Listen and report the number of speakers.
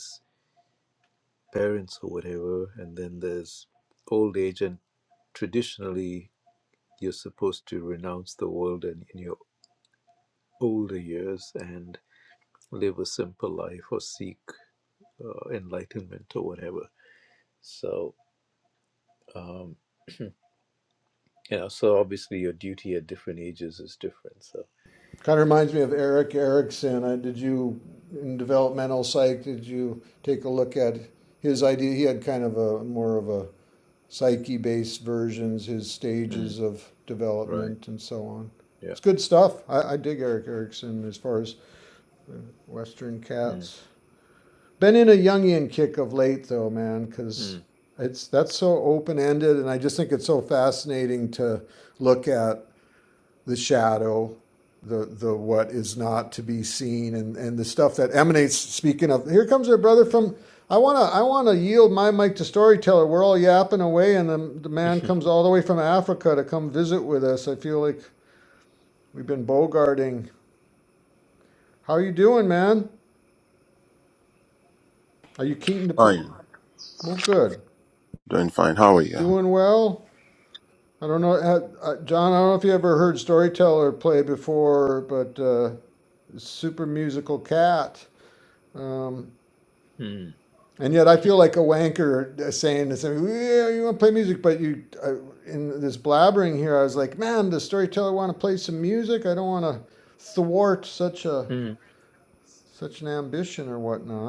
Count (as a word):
three